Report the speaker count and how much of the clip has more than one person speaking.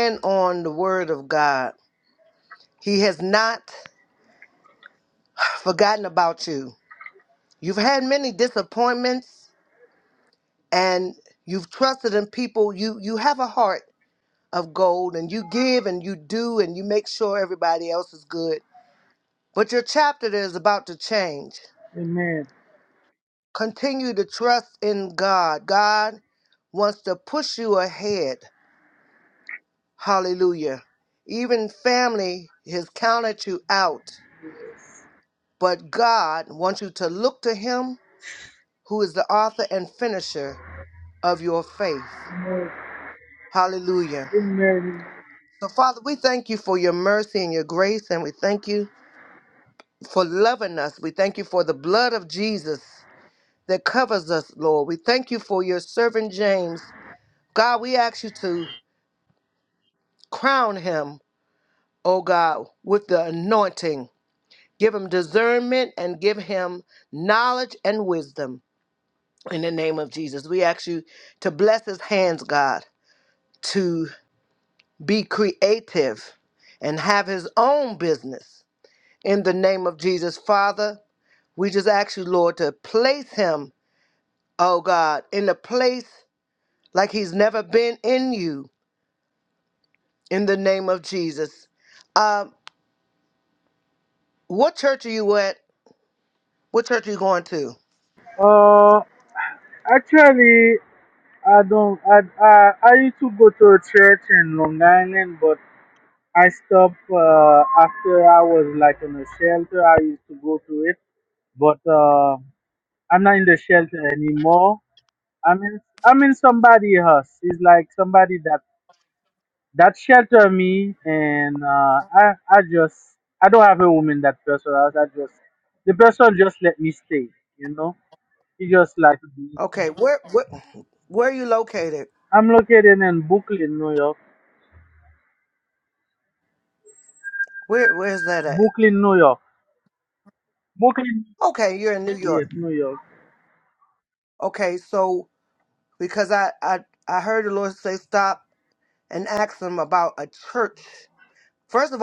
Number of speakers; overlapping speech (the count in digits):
2, under 1%